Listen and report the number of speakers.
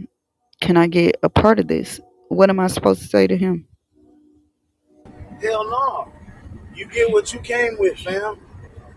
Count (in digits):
2